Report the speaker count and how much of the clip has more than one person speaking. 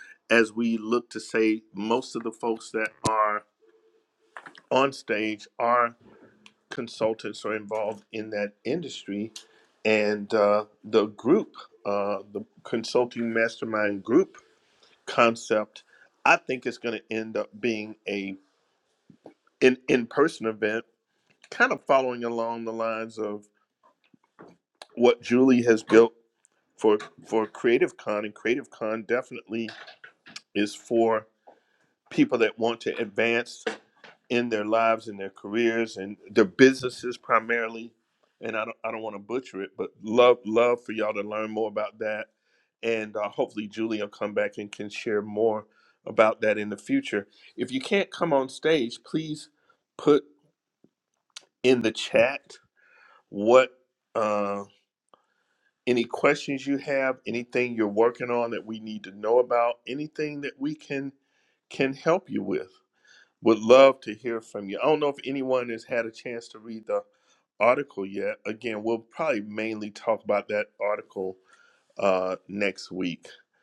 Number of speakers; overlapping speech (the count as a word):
one, no overlap